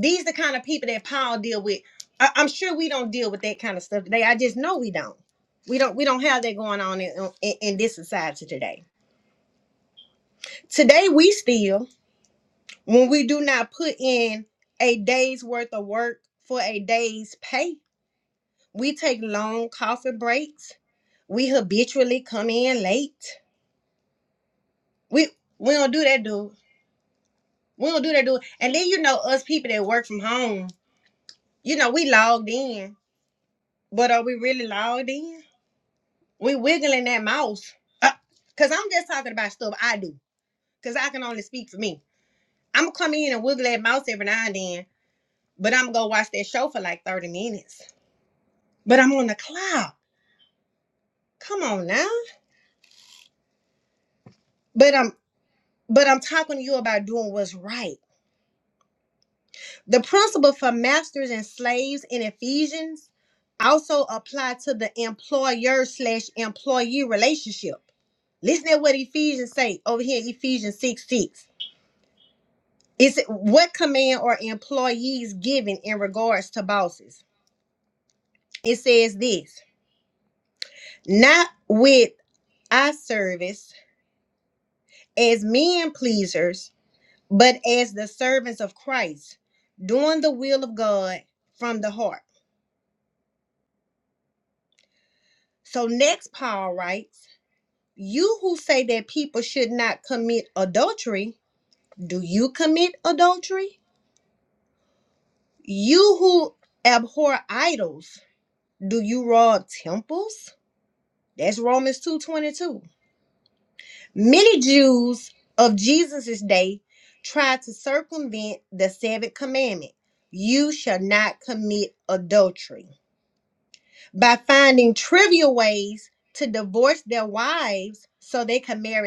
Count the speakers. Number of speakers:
1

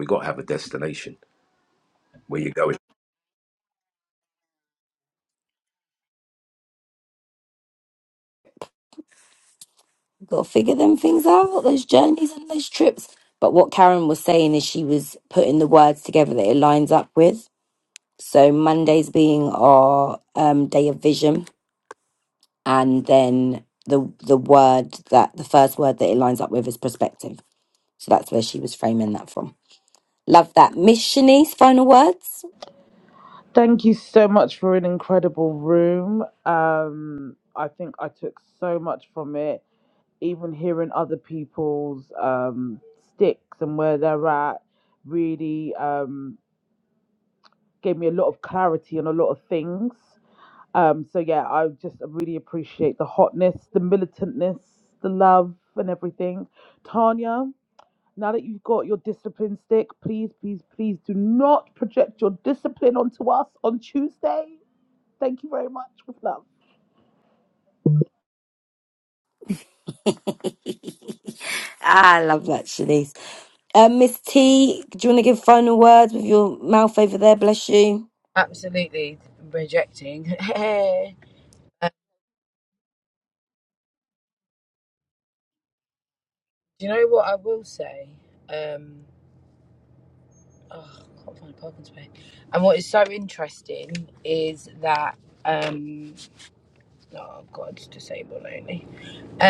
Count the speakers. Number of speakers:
4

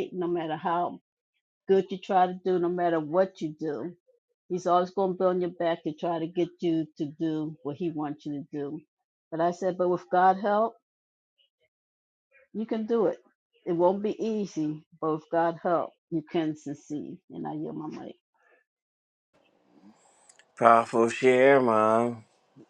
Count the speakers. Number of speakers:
2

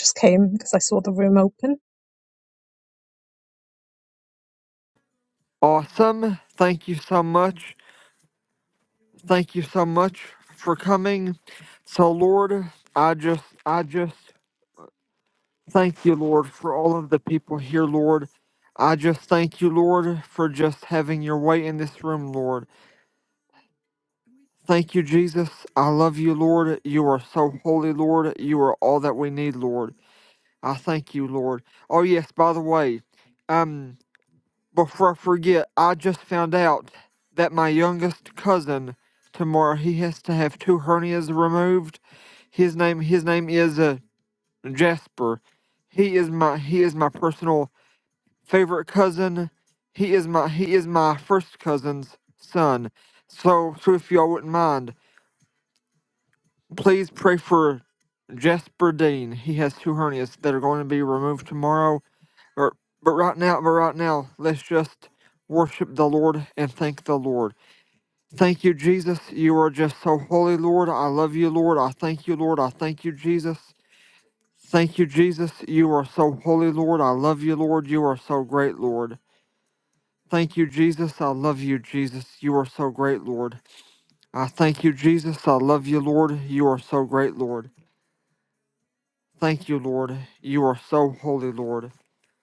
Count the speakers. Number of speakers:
2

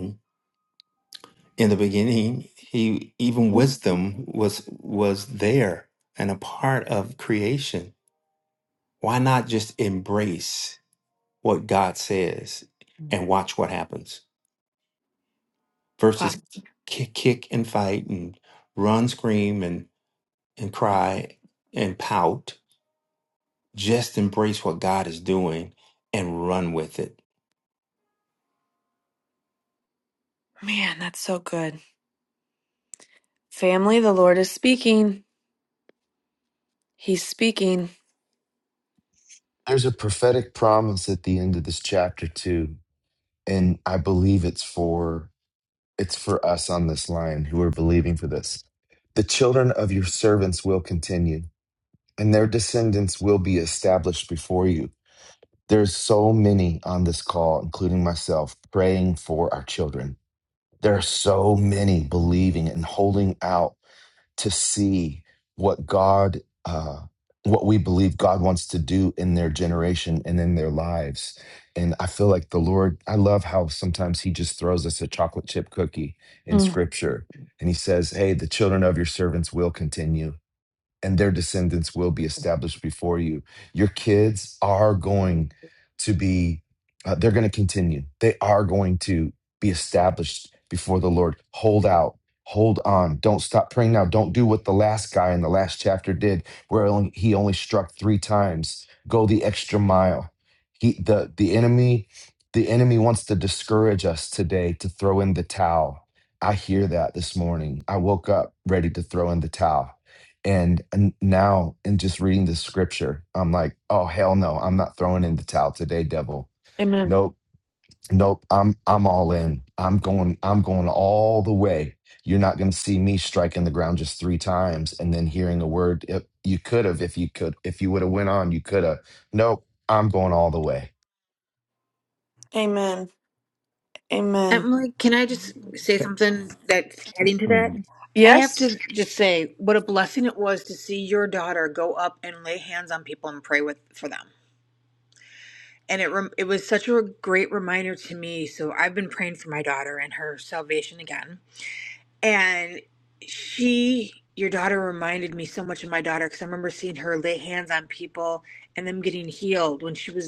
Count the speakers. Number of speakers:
4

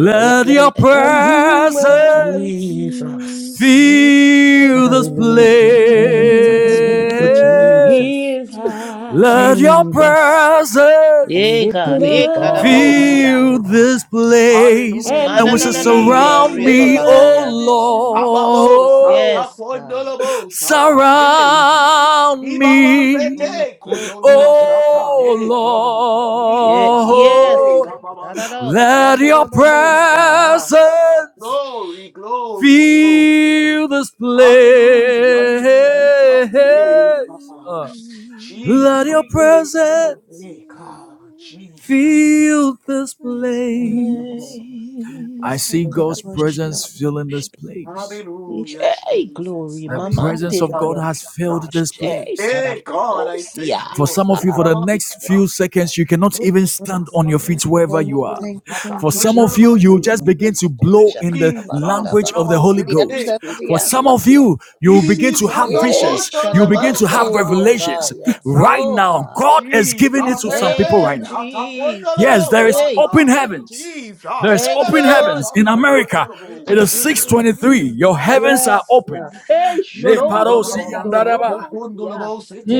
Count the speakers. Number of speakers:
4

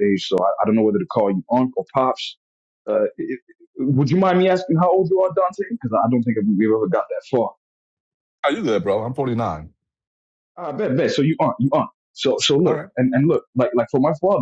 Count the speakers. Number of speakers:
2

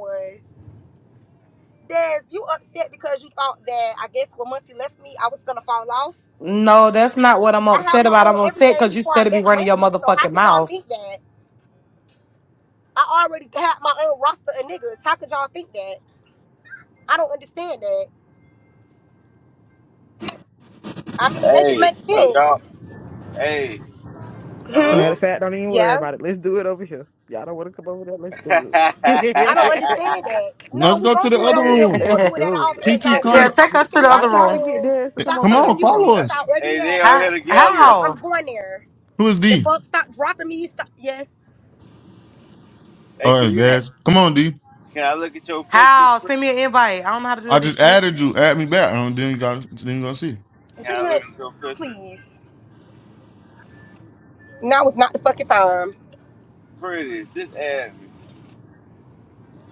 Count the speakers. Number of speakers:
5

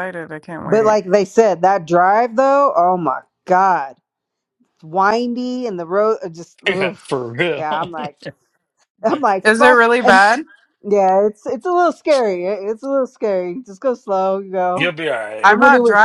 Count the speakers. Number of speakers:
3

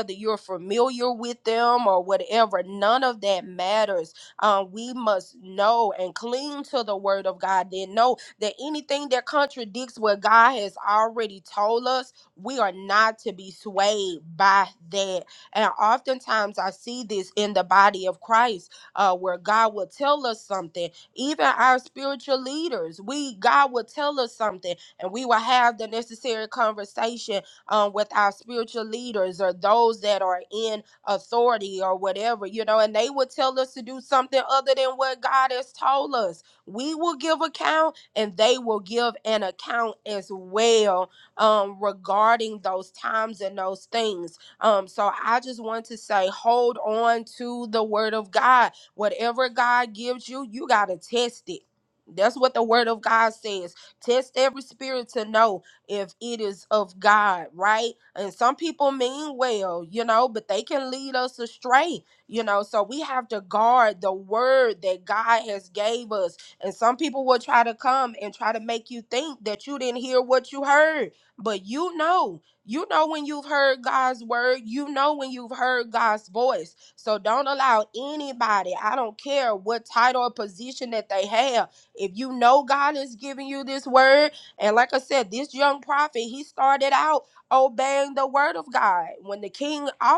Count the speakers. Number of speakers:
1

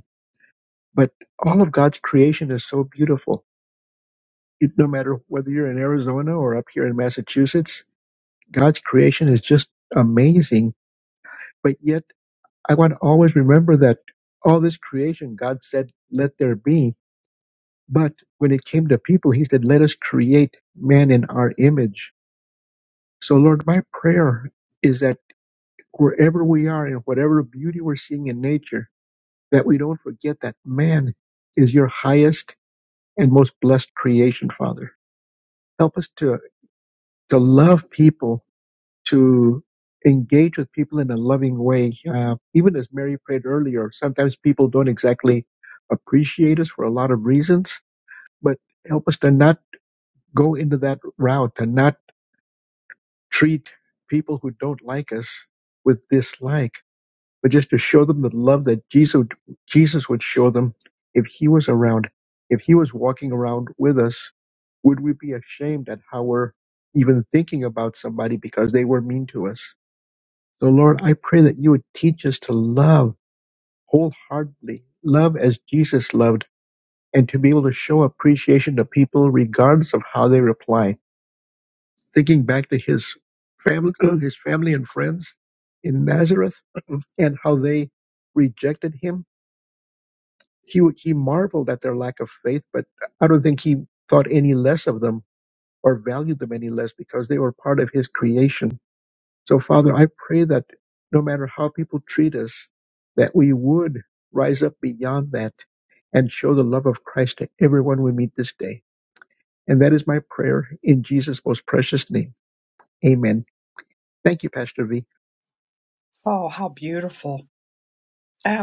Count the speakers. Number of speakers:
2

